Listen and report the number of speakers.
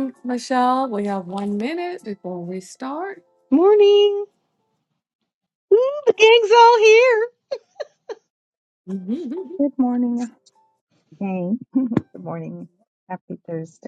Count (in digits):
3